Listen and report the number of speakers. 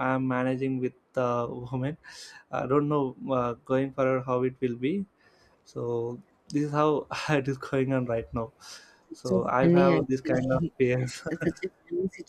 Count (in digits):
2